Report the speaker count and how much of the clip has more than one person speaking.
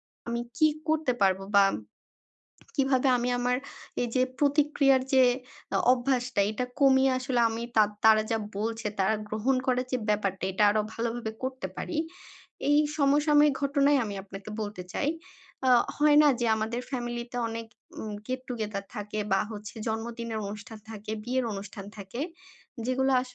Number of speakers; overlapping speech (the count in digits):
1, no overlap